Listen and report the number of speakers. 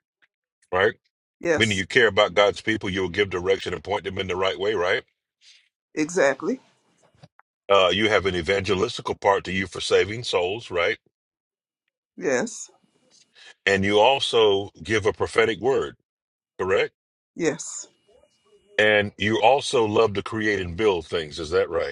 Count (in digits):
2